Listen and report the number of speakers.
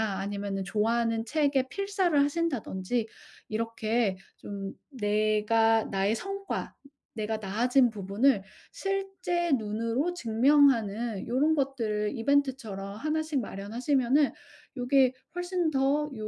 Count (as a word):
one